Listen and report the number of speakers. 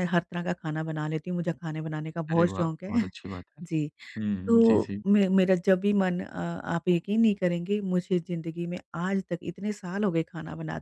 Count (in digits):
2